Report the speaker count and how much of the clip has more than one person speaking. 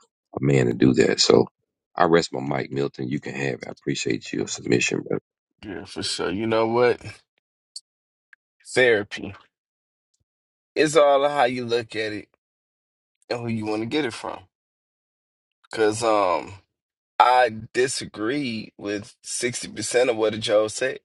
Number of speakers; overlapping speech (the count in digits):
2, no overlap